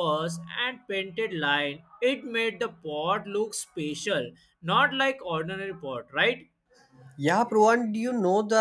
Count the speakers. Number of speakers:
two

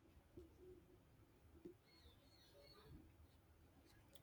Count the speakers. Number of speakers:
zero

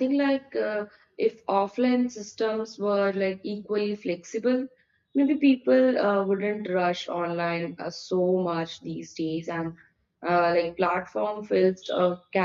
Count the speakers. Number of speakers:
one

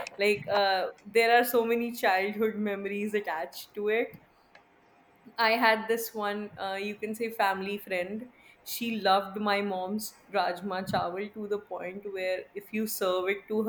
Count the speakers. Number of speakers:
one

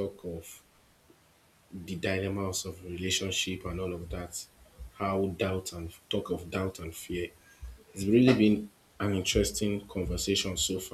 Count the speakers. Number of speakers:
one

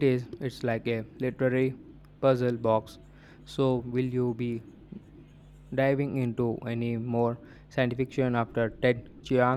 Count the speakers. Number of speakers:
one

